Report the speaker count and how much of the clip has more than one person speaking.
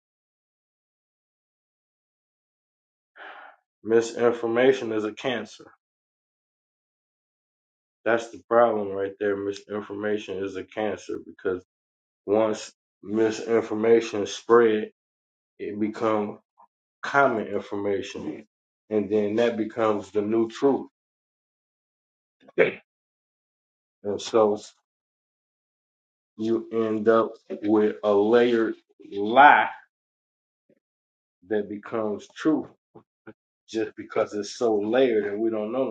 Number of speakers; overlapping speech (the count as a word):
one, no overlap